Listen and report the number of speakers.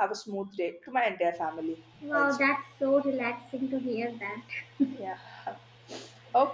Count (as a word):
two